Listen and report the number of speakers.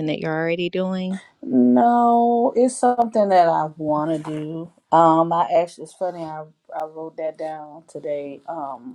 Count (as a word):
two